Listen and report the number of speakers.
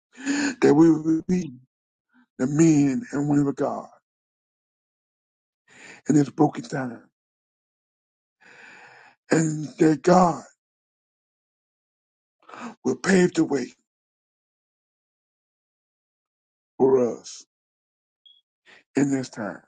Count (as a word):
one